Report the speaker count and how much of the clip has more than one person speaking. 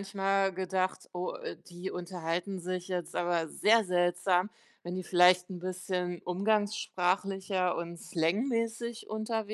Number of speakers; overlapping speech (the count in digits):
1, no overlap